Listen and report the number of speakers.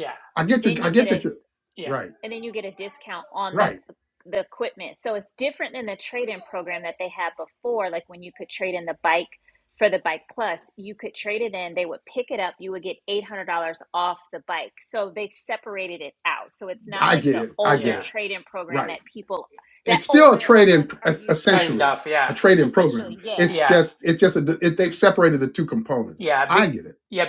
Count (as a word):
three